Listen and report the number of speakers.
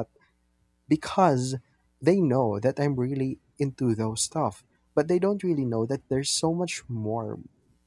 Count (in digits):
1